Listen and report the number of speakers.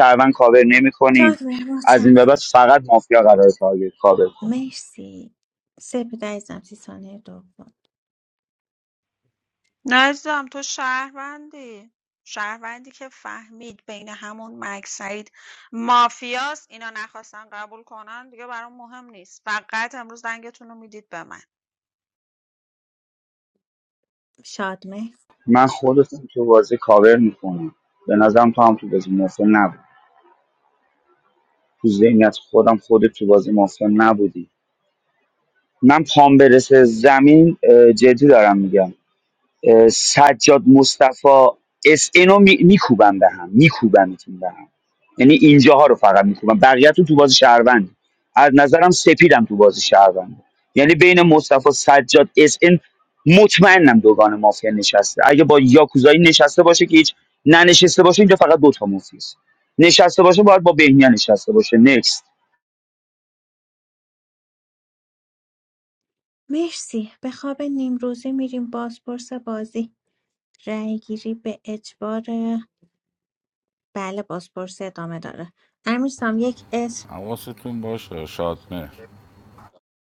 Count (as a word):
four